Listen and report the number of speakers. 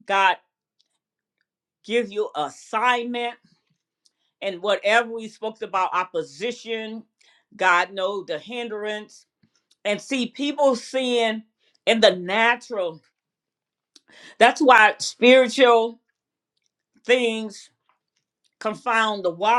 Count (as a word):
one